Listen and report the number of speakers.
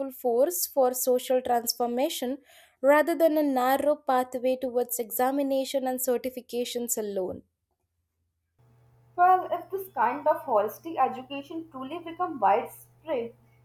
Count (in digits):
2